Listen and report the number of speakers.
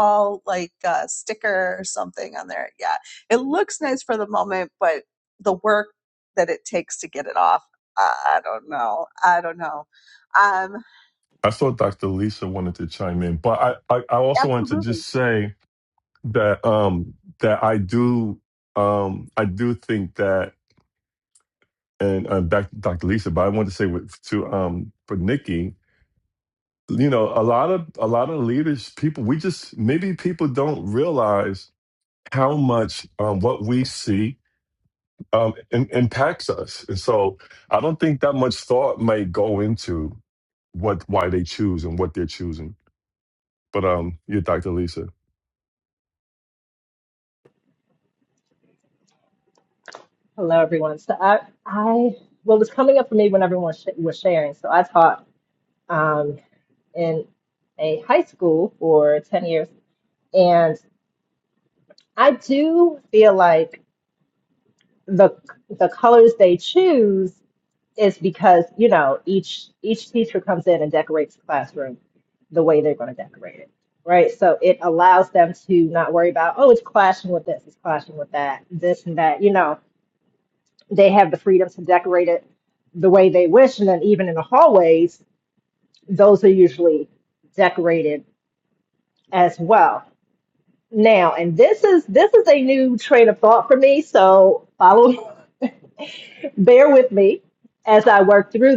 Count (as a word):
three